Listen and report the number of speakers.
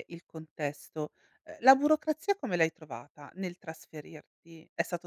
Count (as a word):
one